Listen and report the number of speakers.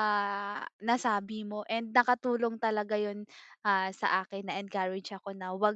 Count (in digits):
1